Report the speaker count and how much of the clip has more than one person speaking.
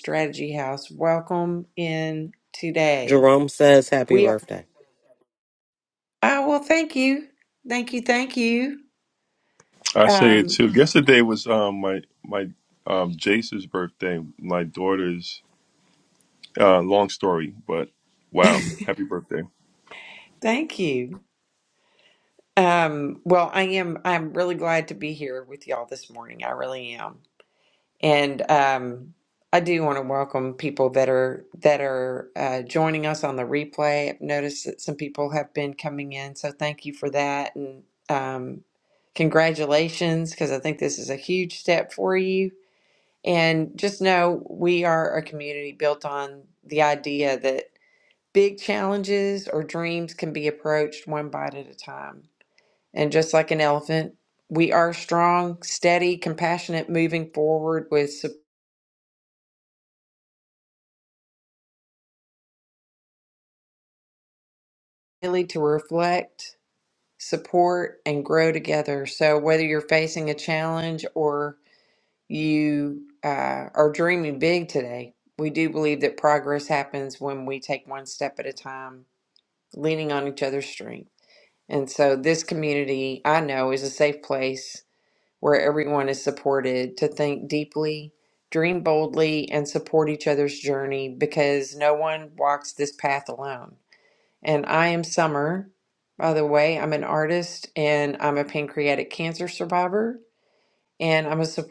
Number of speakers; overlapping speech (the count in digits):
3, about 1%